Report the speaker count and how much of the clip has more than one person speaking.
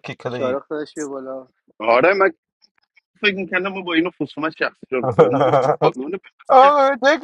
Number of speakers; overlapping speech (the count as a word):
three, about 7%